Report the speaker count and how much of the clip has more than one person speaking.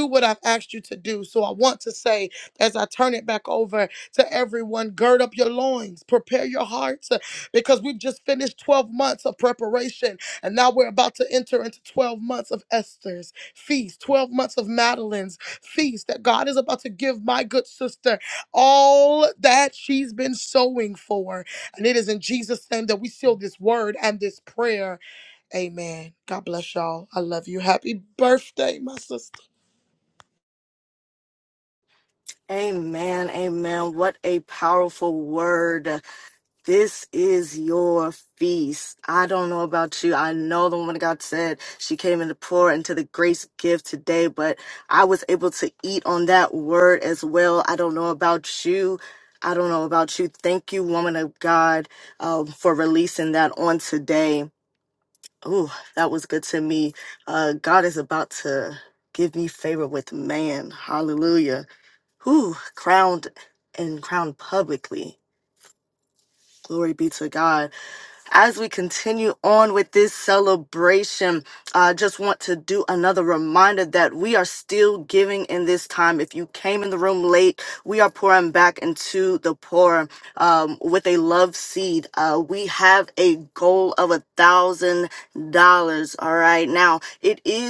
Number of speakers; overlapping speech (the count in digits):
2, no overlap